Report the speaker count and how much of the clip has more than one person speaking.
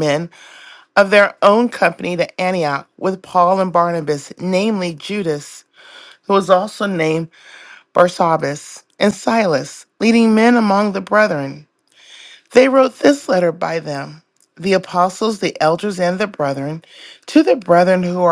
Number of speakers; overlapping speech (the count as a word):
one, no overlap